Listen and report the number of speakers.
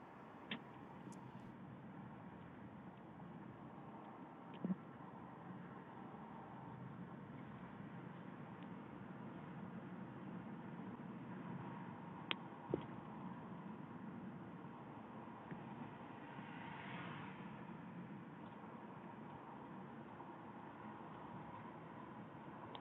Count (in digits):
0